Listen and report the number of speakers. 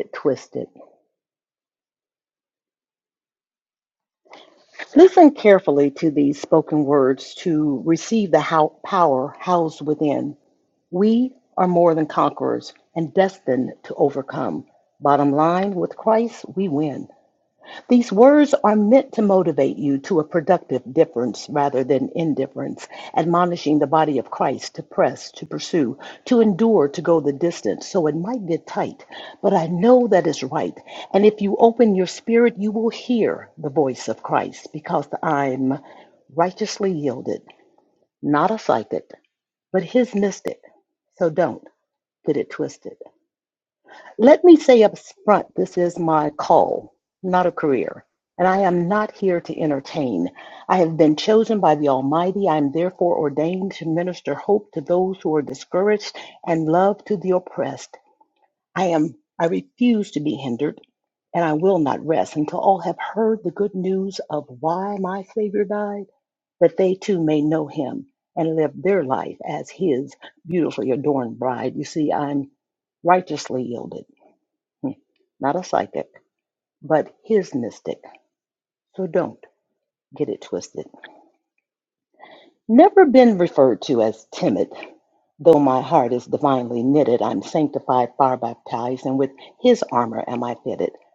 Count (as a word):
one